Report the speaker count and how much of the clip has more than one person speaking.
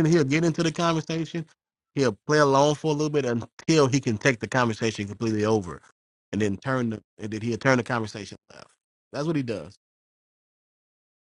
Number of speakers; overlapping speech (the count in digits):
1, no overlap